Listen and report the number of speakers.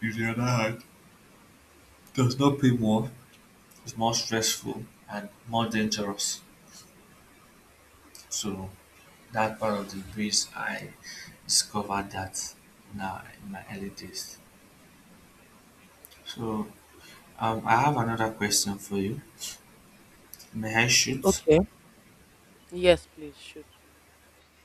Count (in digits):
2